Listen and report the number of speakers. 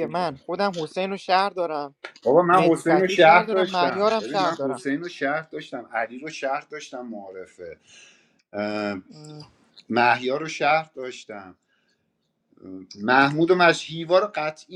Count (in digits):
2